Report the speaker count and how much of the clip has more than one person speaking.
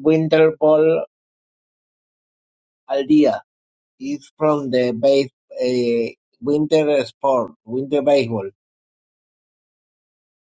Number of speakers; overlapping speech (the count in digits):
1, no overlap